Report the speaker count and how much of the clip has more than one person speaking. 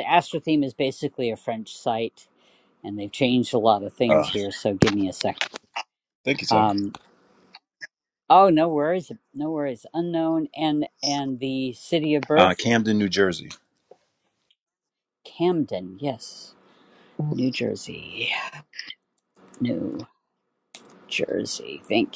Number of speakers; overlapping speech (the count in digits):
2, about 3%